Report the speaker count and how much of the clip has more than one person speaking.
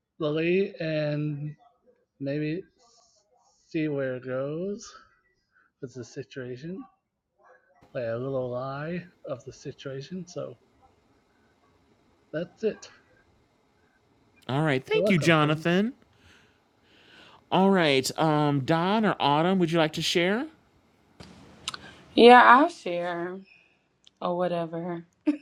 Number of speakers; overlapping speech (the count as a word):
three, about 3%